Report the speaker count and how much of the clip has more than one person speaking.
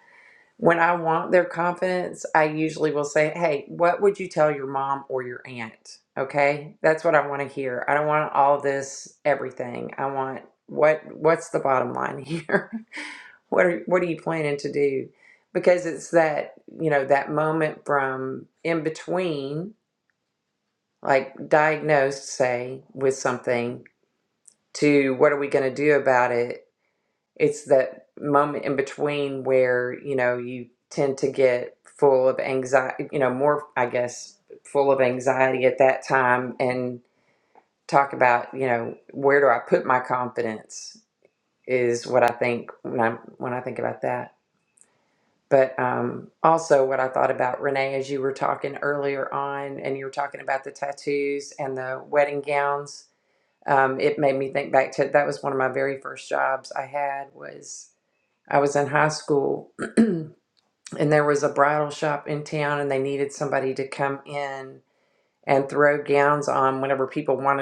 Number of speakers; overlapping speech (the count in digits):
1, no overlap